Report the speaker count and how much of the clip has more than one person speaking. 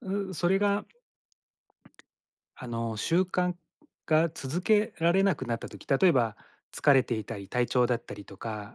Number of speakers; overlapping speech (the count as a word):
one, no overlap